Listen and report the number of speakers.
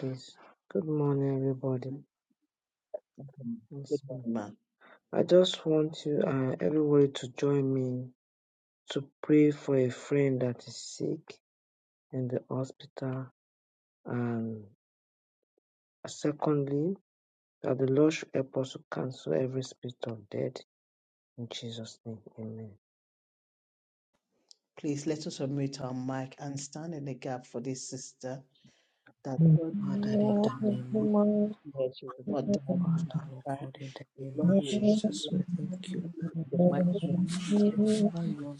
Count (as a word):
four